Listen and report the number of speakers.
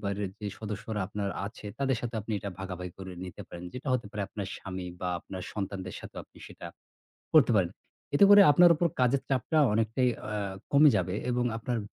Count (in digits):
1